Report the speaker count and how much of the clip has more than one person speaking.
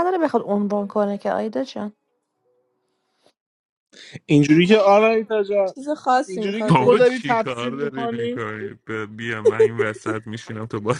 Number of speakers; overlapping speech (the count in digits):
4, about 19%